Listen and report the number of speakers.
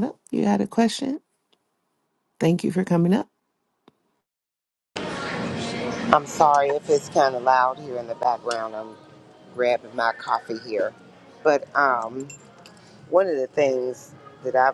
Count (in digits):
2